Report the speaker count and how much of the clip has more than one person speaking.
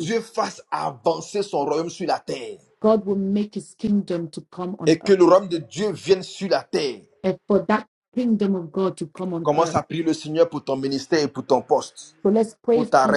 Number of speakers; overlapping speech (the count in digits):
2, about 8%